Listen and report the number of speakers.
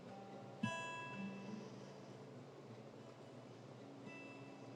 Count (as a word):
zero